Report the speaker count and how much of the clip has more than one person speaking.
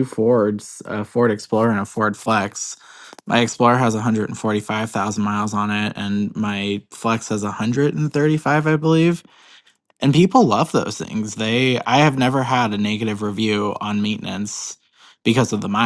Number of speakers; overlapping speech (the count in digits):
1, no overlap